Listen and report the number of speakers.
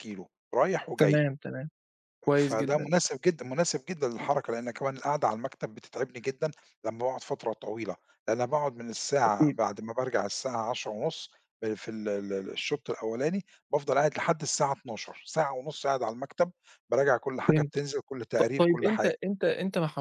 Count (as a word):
two